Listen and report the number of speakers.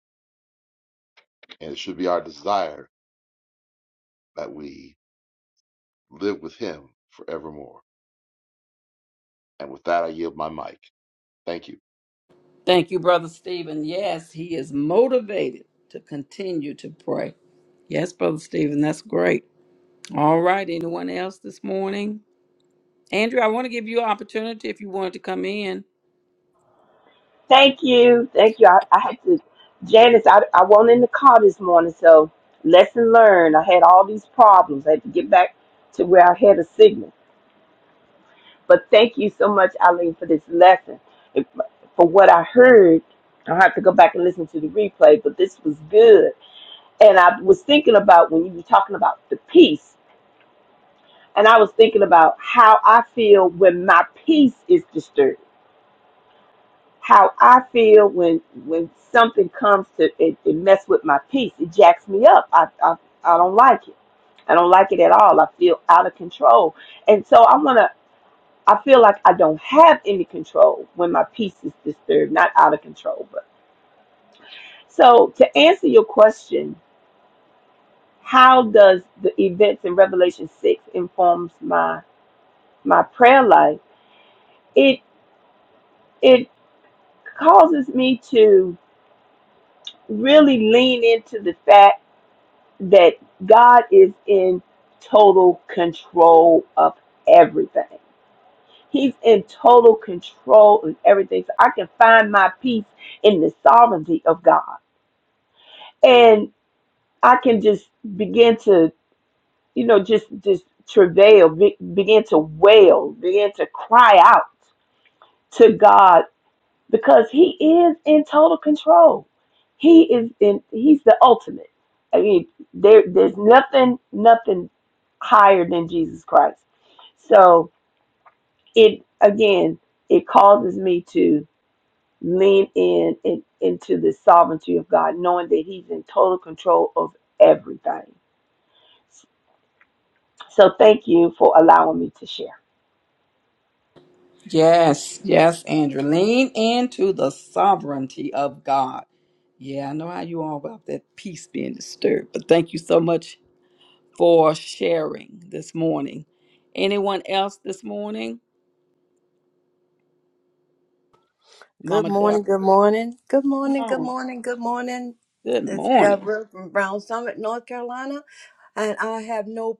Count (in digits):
4